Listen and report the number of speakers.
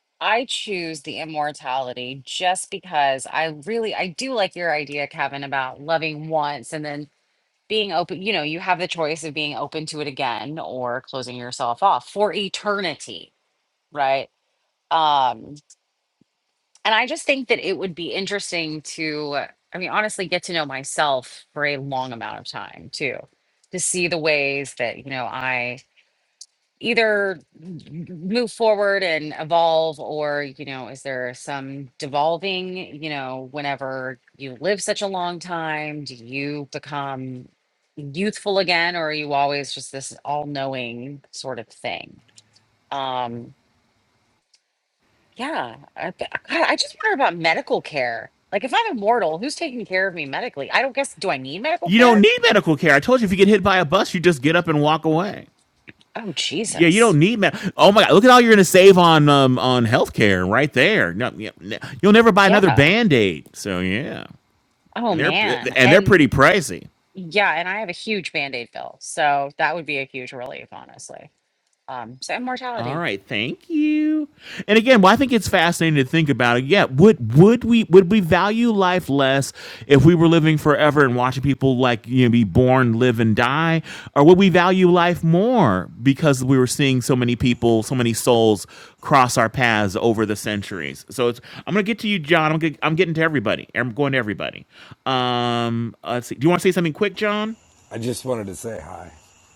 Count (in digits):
3